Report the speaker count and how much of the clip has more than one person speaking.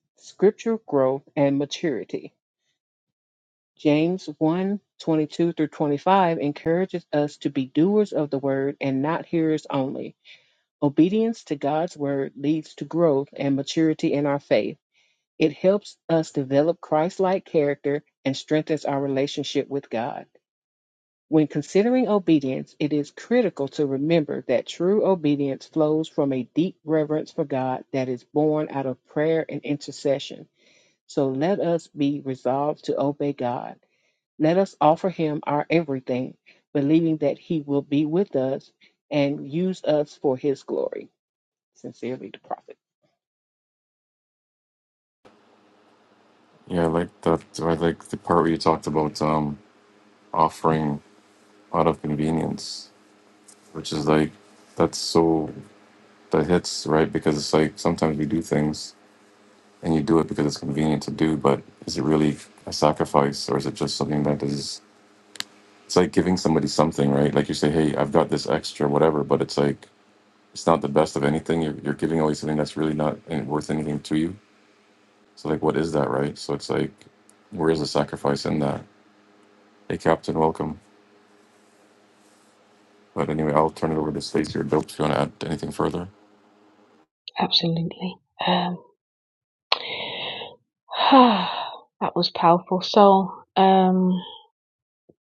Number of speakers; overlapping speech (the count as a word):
three, no overlap